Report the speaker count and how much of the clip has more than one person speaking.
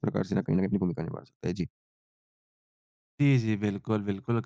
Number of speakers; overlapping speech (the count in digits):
2, no overlap